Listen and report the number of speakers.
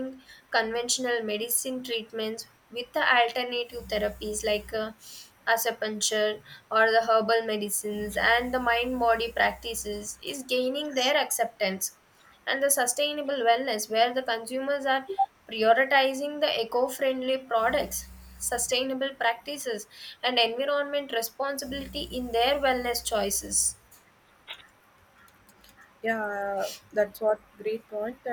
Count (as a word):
two